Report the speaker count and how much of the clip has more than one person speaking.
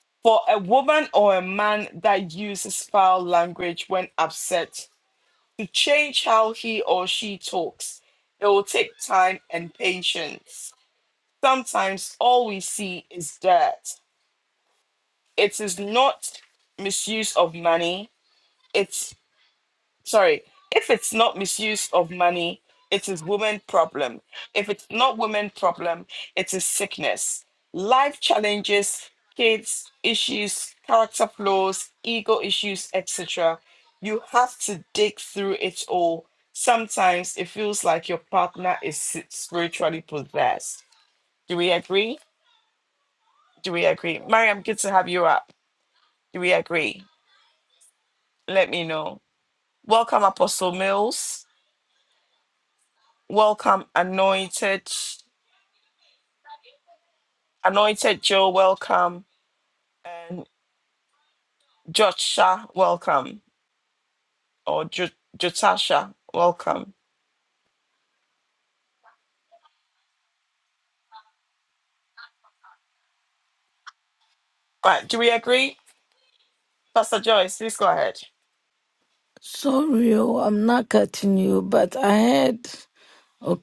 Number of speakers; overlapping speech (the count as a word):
two, no overlap